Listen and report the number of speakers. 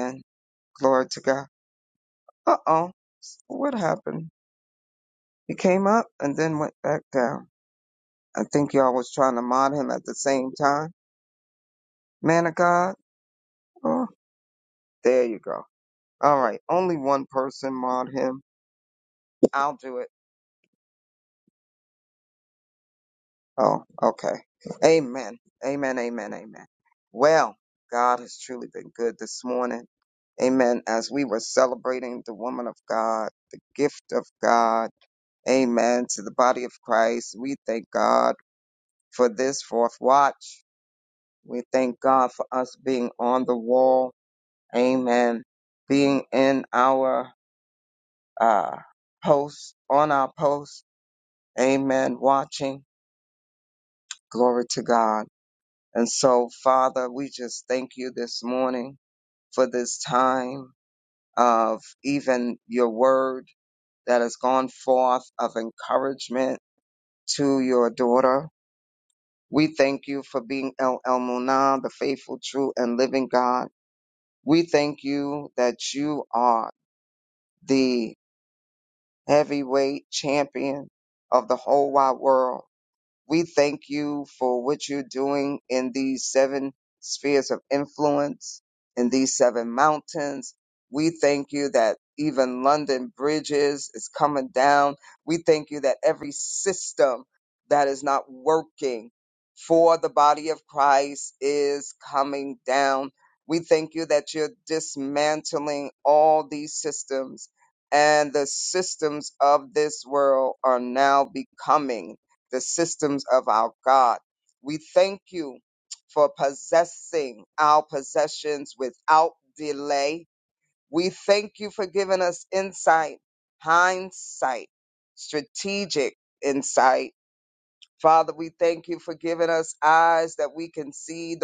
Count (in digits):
1